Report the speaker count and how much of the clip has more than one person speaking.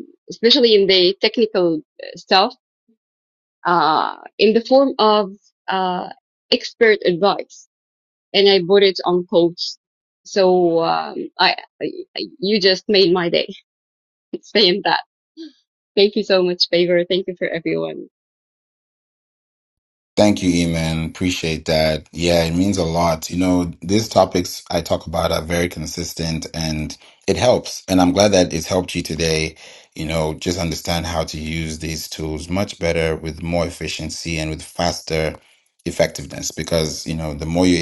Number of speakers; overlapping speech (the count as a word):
two, no overlap